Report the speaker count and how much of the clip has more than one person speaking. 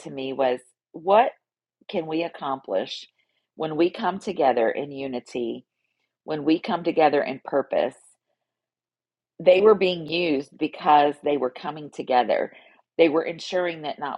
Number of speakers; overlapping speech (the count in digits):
1, no overlap